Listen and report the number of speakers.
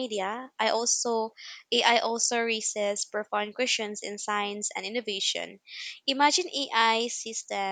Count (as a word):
one